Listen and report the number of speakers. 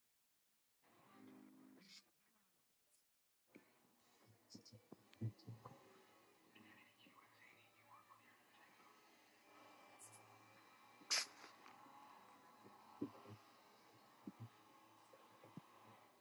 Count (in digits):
0